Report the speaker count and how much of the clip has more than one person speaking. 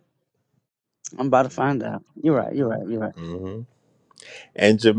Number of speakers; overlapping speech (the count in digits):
2, about 16%